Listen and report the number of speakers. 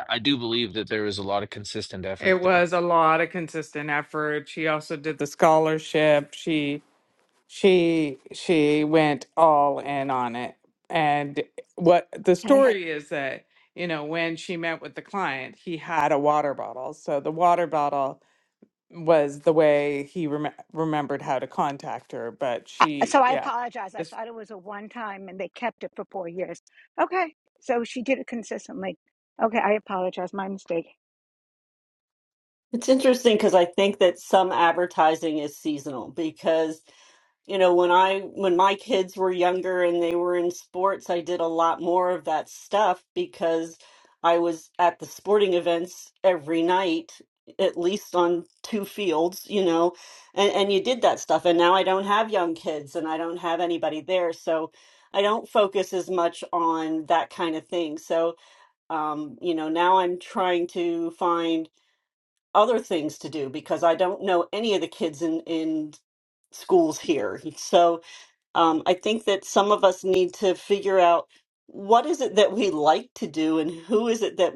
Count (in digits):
4